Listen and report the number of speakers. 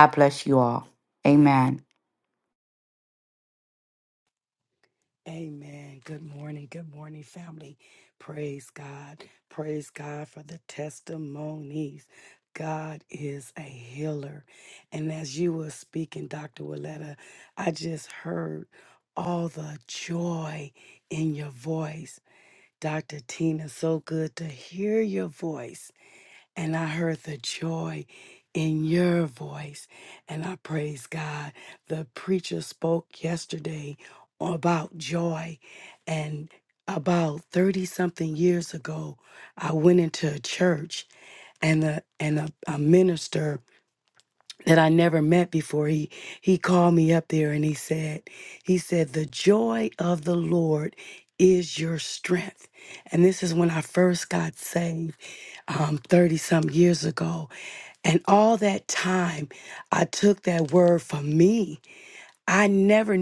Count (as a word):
two